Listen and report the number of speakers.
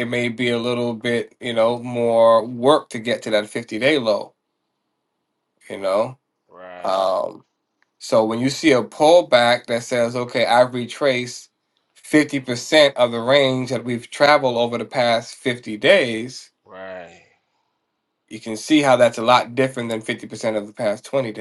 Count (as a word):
two